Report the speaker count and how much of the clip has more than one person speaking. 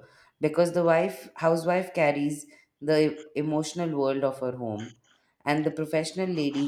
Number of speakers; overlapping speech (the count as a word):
one, no overlap